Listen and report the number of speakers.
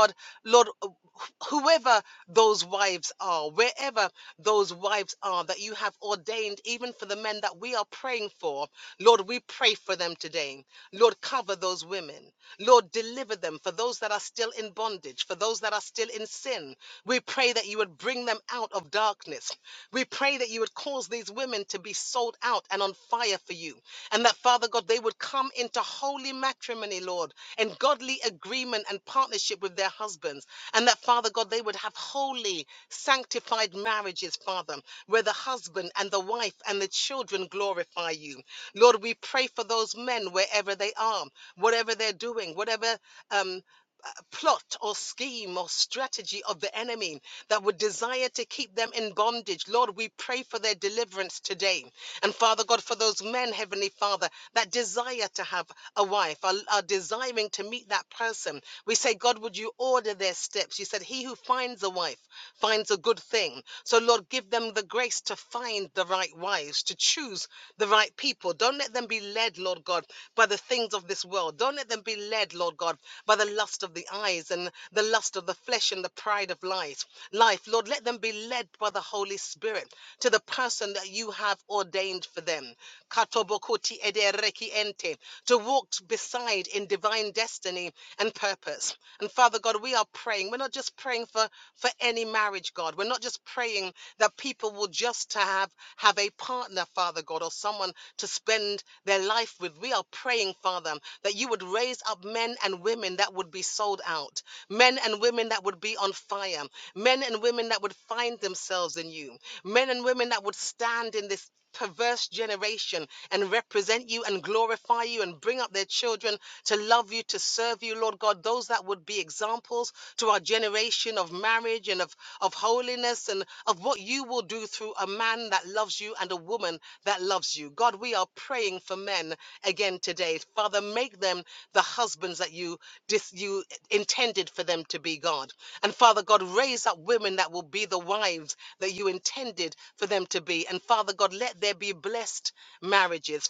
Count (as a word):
one